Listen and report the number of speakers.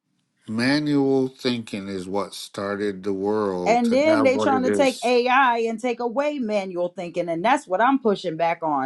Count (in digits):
2